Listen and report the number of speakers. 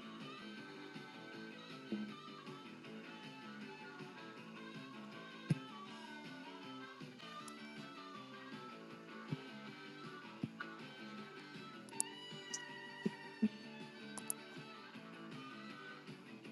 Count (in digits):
0